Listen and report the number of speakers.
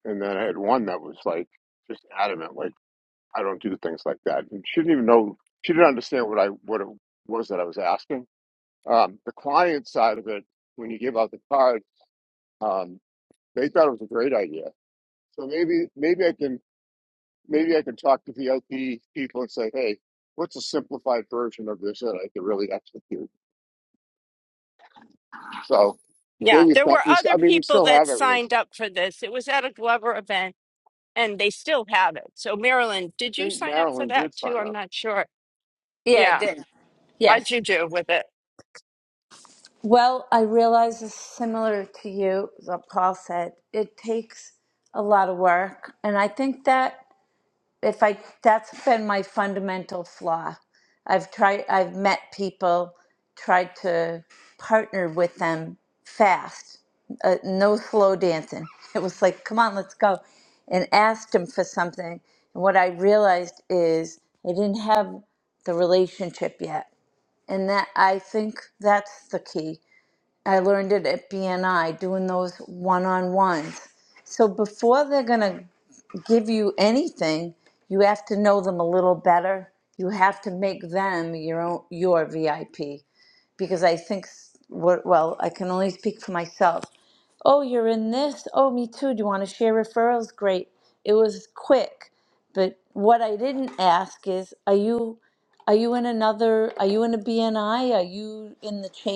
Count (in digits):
3